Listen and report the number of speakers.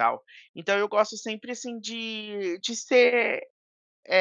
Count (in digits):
1